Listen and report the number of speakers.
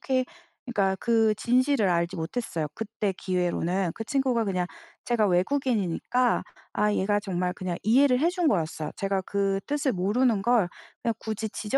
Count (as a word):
one